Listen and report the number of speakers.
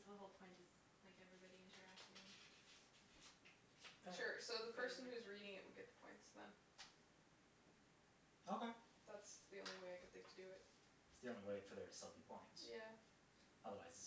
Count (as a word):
three